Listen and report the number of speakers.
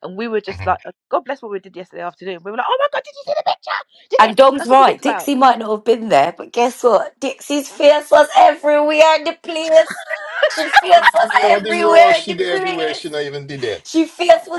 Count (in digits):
3